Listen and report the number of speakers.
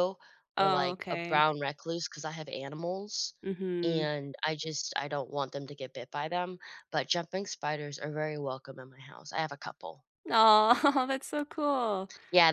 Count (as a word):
two